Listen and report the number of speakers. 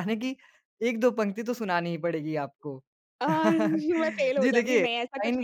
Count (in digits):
2